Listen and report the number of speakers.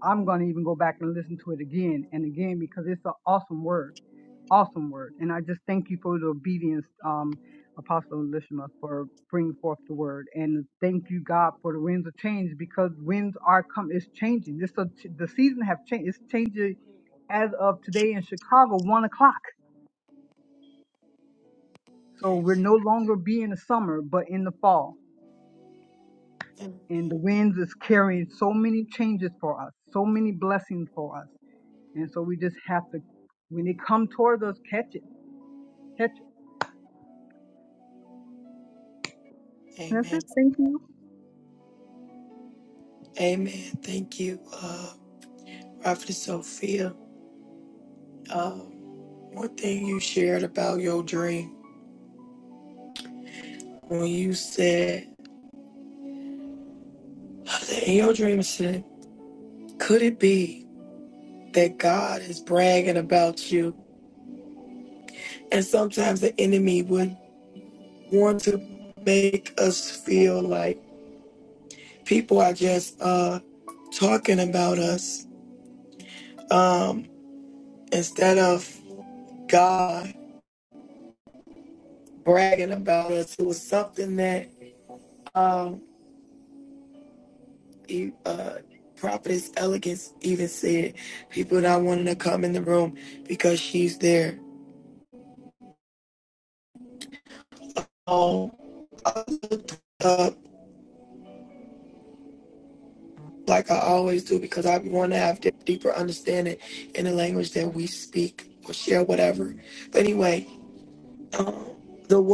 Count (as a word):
two